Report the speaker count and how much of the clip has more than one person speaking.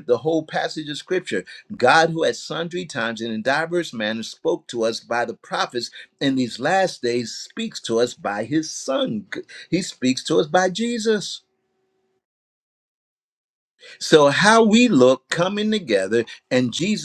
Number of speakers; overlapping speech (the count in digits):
1, no overlap